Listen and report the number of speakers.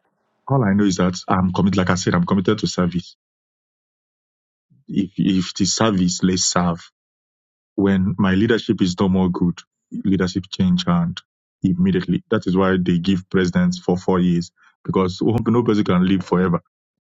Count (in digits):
1